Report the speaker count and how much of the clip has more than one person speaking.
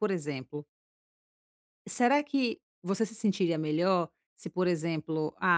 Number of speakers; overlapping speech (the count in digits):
1, no overlap